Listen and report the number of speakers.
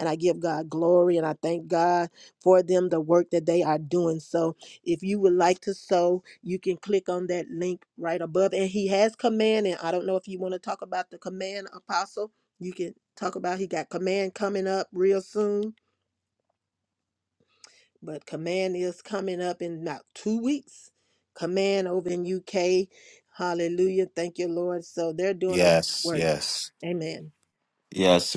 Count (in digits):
2